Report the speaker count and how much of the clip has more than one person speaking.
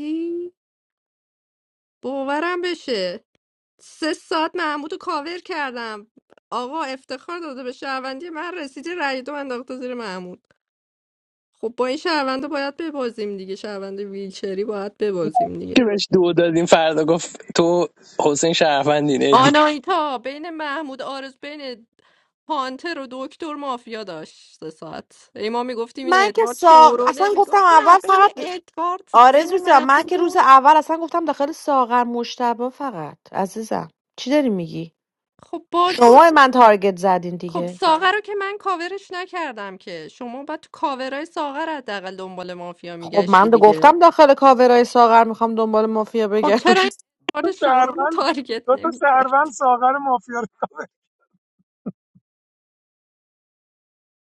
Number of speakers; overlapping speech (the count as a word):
four, about 13%